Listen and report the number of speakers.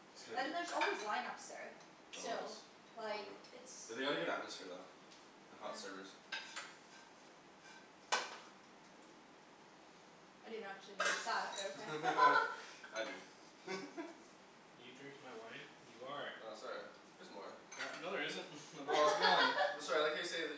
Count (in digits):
3